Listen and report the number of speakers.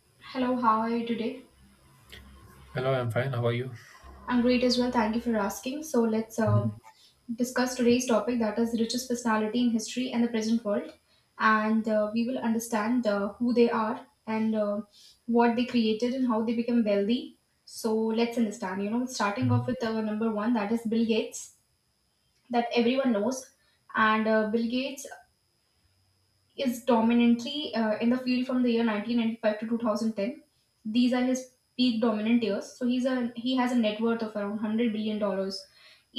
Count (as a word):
two